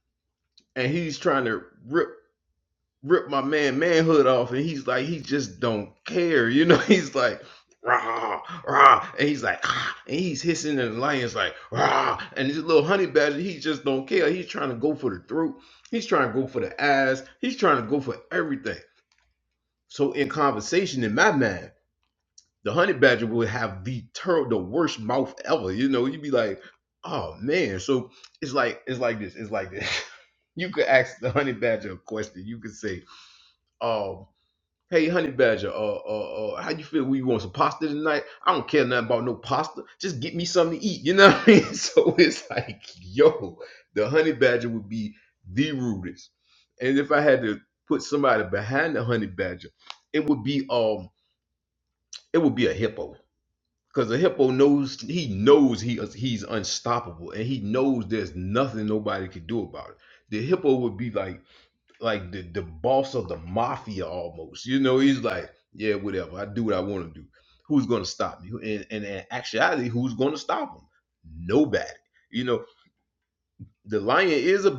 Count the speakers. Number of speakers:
one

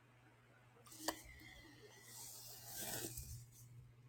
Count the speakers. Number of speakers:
zero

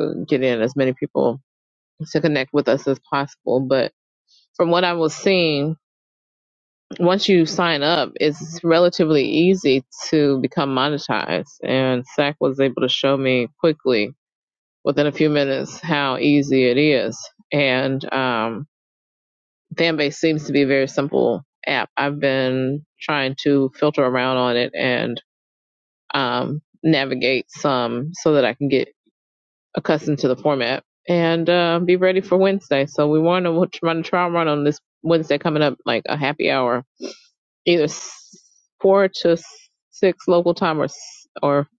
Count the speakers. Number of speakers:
one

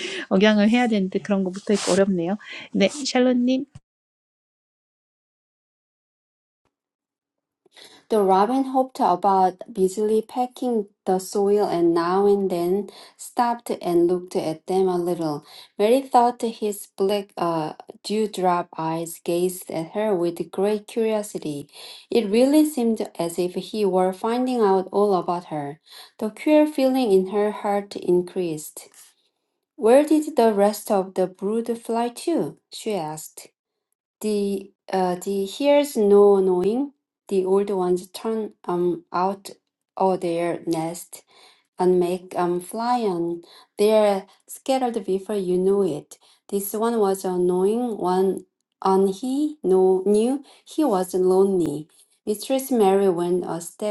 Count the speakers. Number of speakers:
two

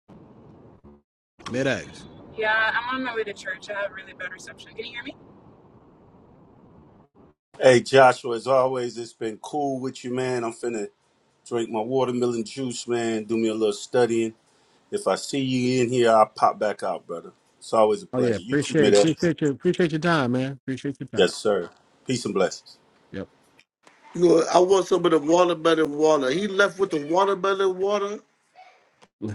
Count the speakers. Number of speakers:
four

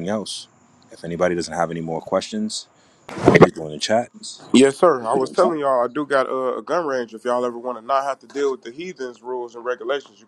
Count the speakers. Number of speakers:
two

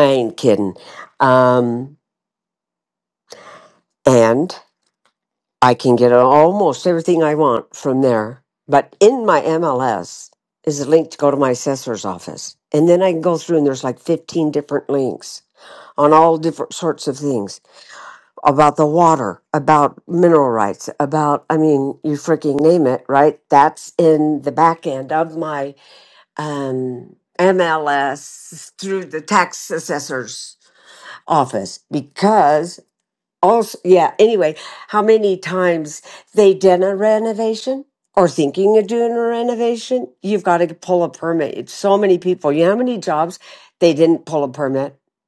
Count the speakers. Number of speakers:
one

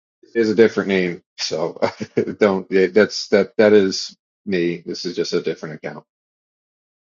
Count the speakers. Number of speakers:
one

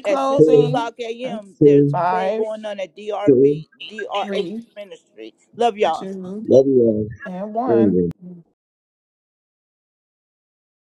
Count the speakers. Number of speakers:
three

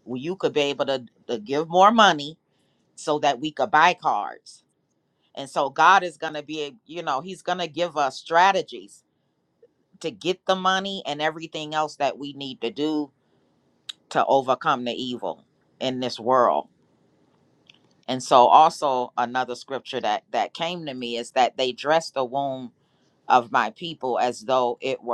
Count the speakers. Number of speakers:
one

